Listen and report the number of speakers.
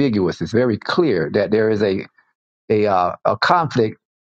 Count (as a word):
one